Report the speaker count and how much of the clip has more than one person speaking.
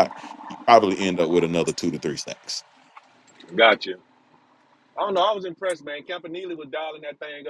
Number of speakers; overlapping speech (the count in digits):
2, no overlap